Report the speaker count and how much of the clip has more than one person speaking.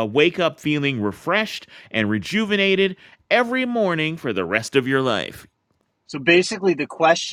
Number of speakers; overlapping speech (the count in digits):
2, no overlap